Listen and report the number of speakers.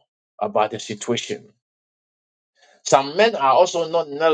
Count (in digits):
1